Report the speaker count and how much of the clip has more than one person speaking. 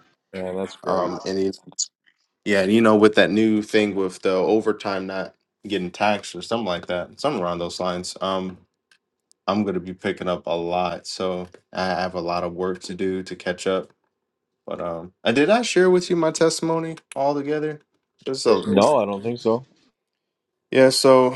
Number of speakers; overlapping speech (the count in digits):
2, about 3%